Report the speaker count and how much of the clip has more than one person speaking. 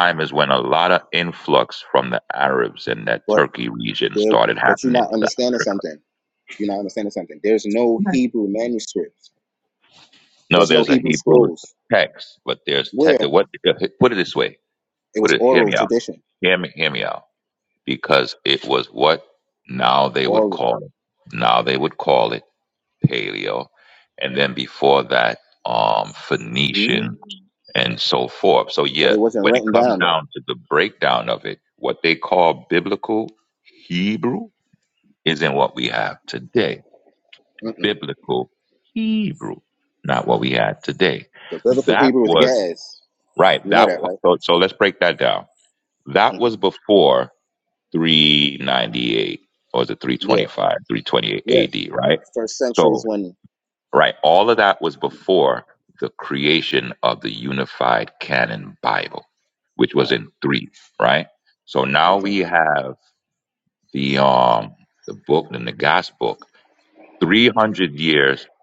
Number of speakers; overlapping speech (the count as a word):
two, about 12%